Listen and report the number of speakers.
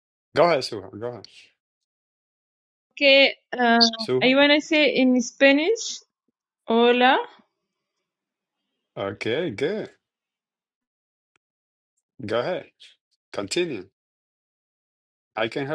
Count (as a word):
two